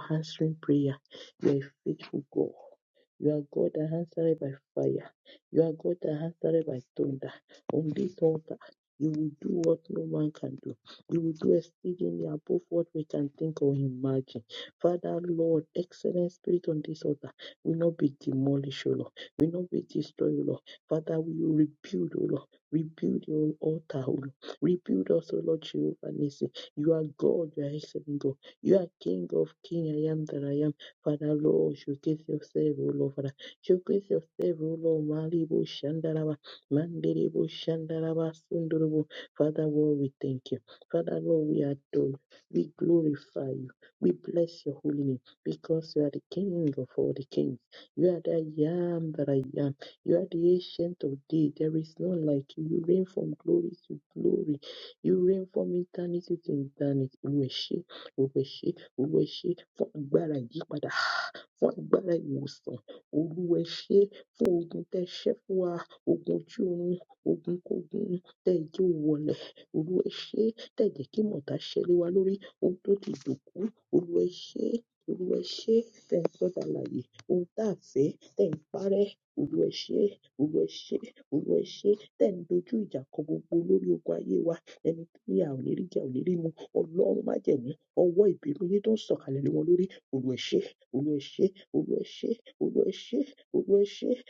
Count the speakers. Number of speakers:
one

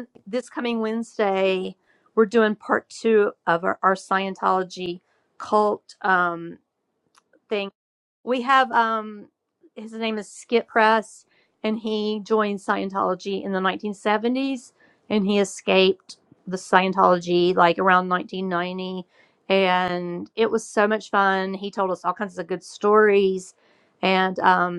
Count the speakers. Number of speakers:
one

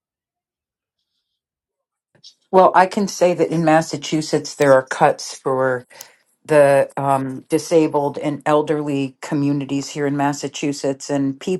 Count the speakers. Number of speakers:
one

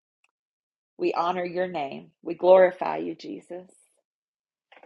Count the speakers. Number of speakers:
one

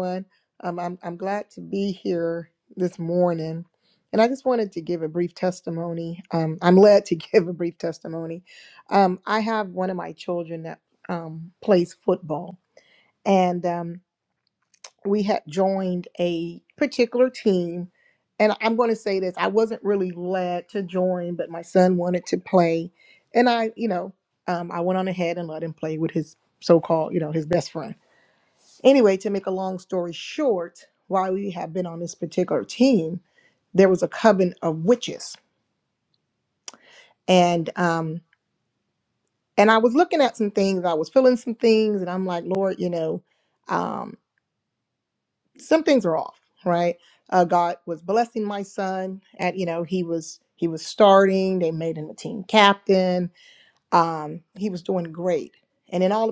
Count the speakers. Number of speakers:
one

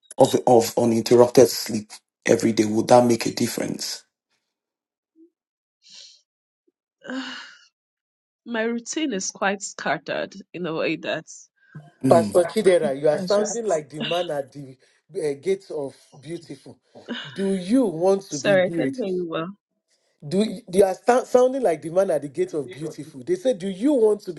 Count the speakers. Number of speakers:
three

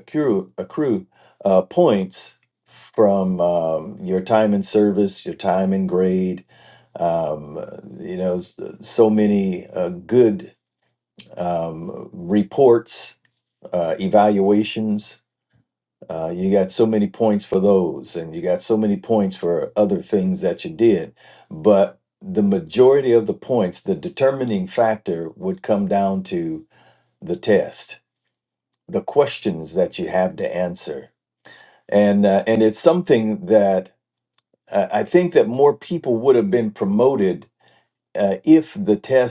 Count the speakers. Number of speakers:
one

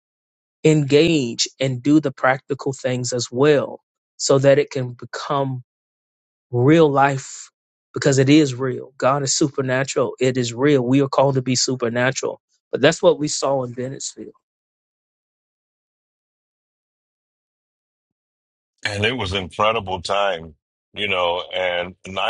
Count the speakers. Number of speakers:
two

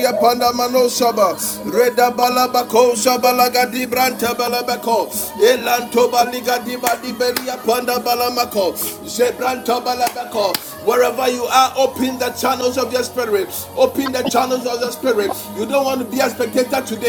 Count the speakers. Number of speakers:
one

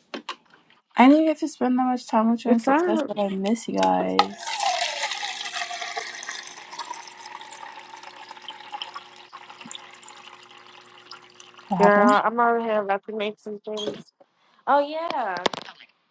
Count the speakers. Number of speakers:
two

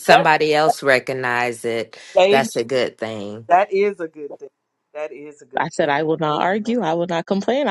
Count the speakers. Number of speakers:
three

